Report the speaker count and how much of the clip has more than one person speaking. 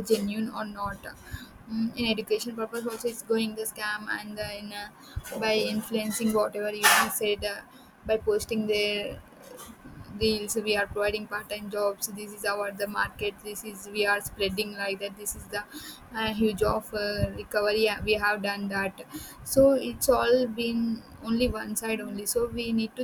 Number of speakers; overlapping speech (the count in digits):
1, no overlap